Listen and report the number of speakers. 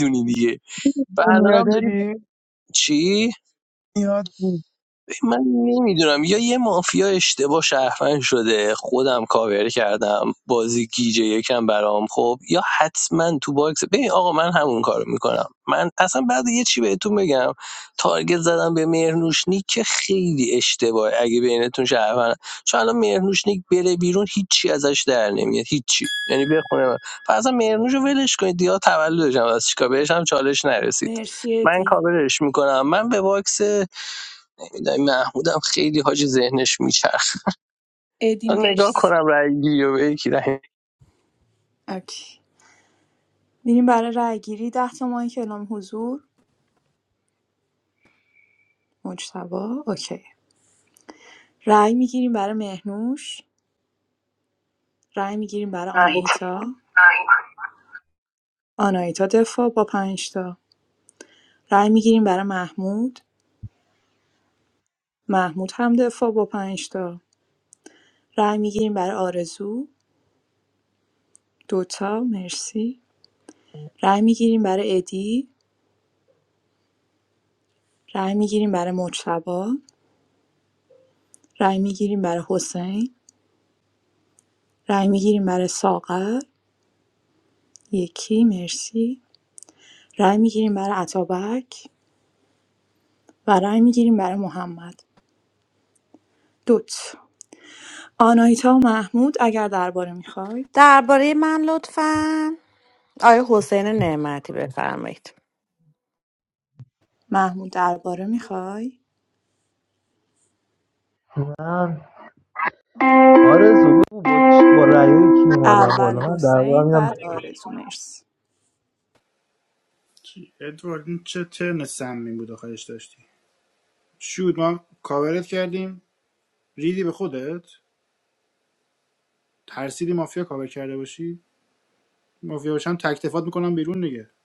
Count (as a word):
six